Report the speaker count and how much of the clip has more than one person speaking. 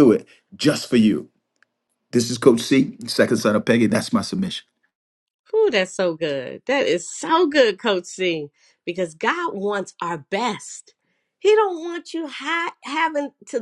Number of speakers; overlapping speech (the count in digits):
2, no overlap